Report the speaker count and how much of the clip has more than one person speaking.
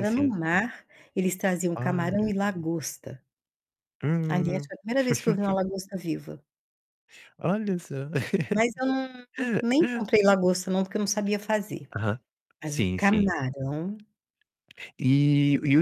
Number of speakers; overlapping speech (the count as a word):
two, about 11%